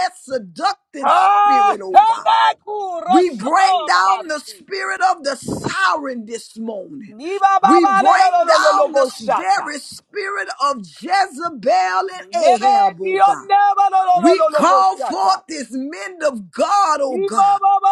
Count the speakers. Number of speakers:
2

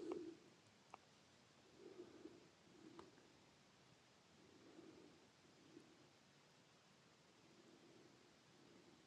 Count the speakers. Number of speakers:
0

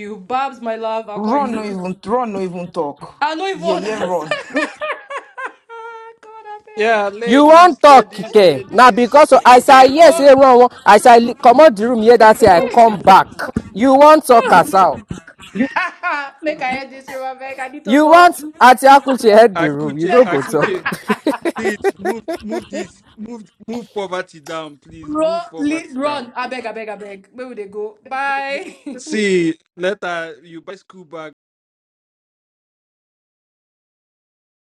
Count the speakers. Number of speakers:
4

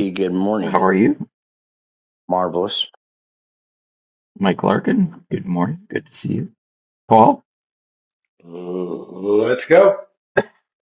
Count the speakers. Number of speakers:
3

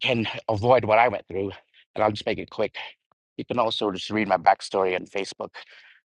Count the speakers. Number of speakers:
1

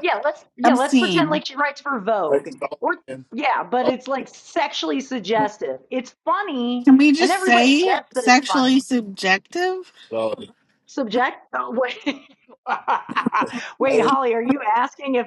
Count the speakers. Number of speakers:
3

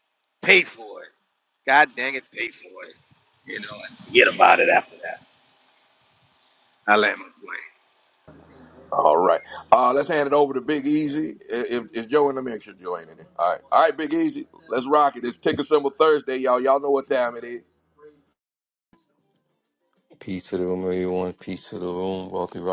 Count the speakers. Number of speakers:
3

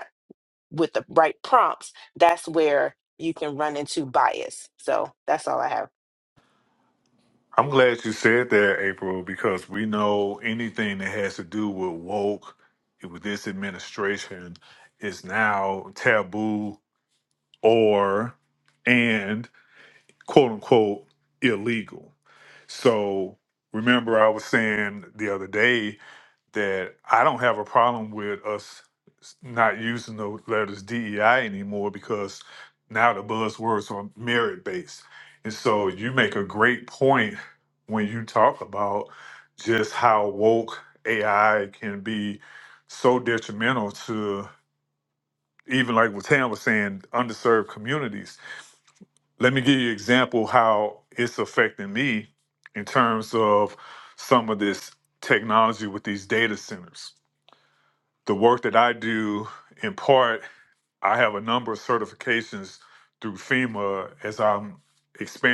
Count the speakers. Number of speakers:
2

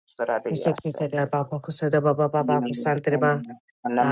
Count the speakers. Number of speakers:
2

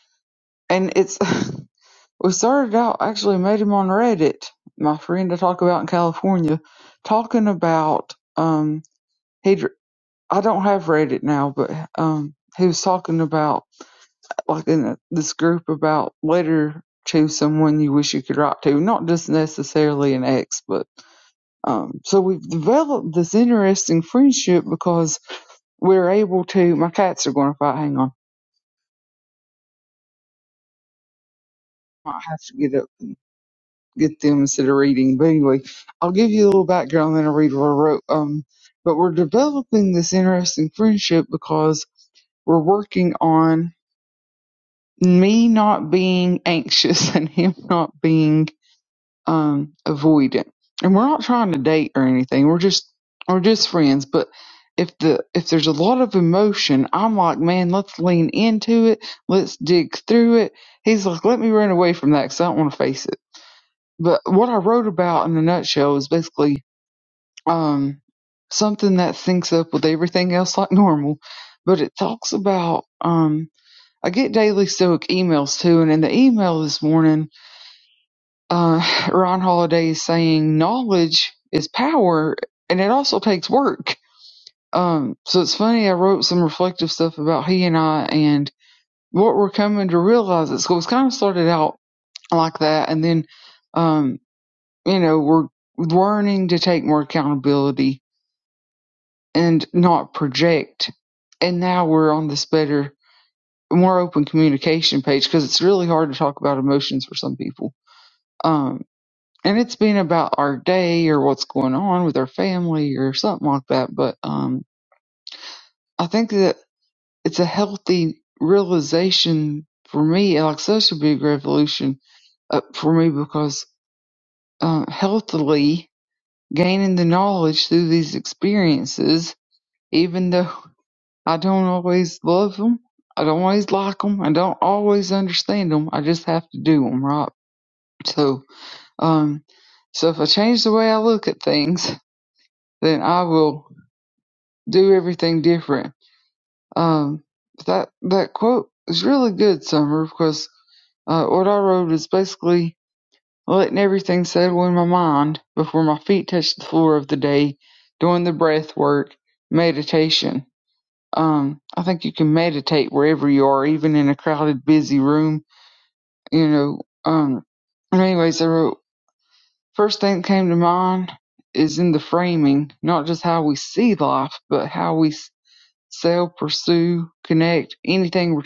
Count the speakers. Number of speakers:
1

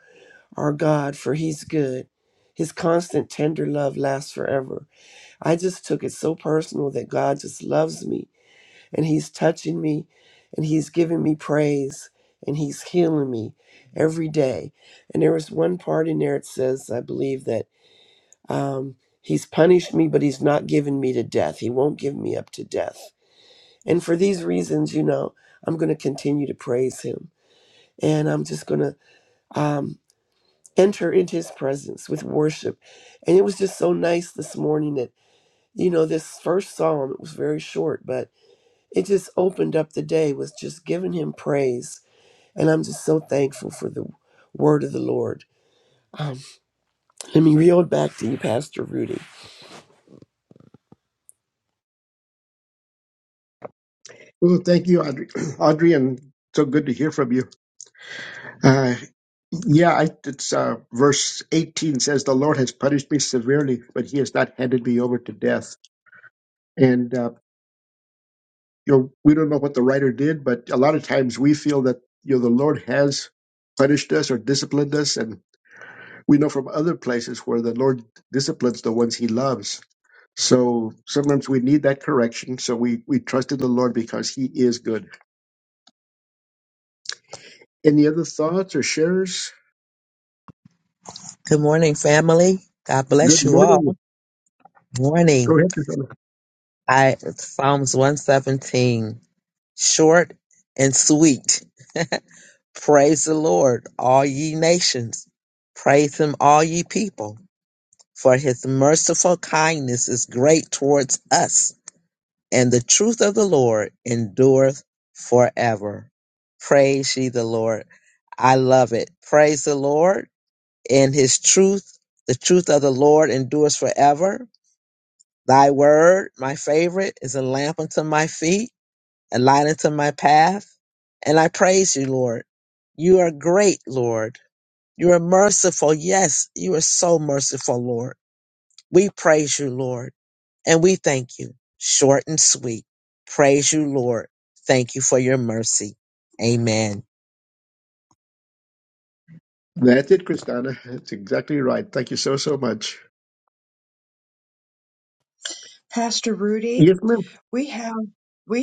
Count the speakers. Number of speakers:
4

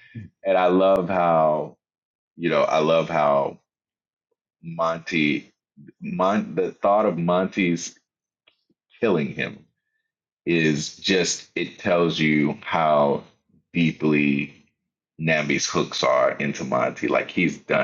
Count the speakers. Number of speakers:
1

